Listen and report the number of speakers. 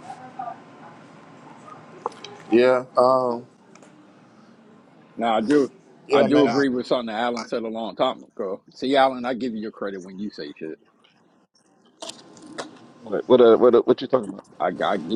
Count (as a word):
three